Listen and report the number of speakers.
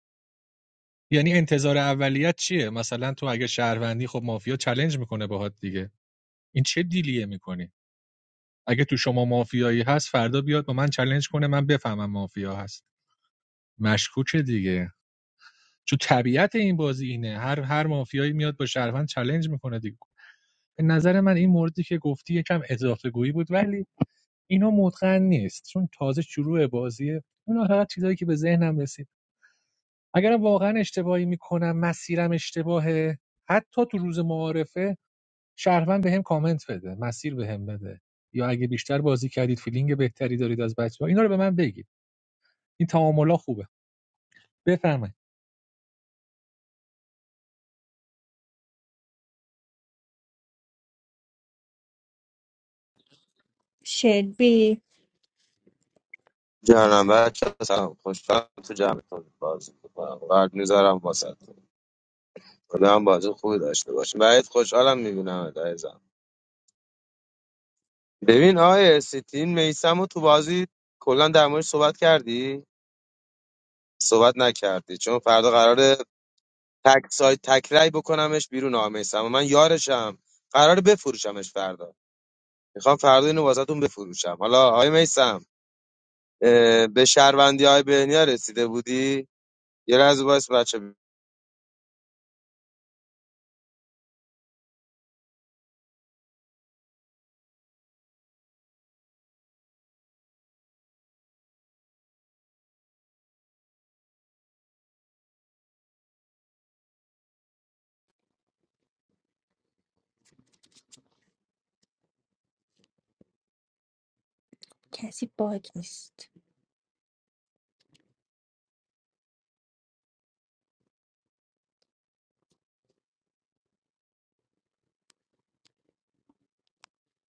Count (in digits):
3